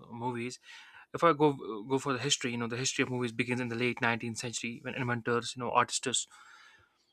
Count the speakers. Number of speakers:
1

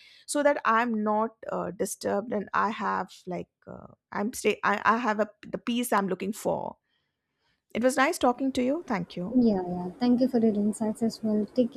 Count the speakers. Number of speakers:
2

